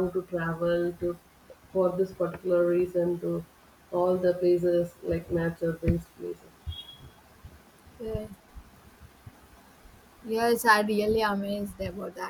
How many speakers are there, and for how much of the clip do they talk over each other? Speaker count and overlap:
two, no overlap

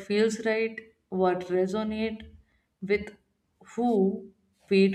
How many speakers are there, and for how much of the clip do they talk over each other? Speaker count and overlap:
one, no overlap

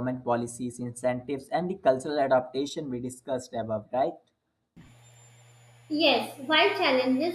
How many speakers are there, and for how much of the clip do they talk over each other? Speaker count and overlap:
two, no overlap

